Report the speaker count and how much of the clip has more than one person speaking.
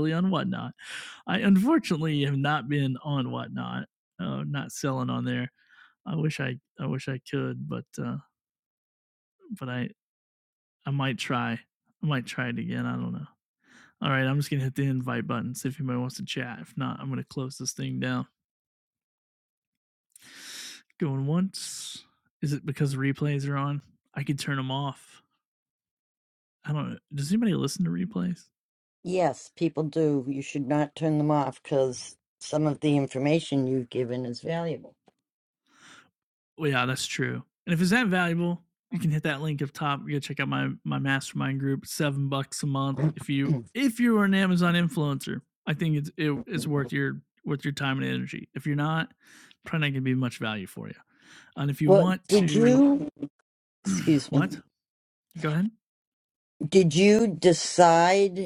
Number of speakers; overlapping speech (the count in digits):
2, about 2%